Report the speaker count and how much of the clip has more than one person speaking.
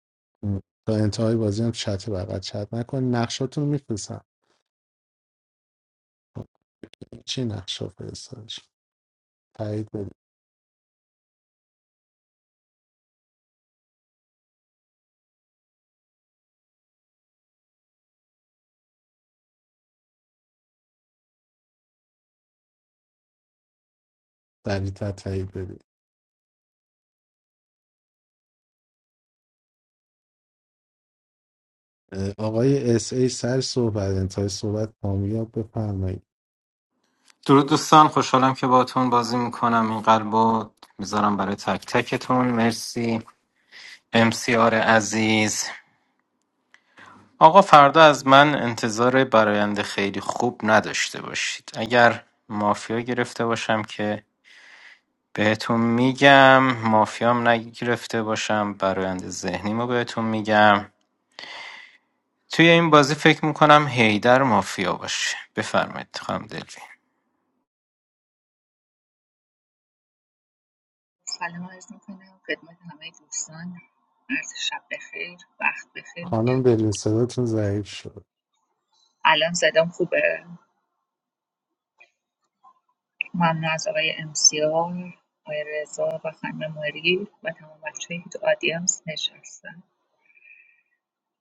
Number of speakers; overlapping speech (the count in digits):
3, under 1%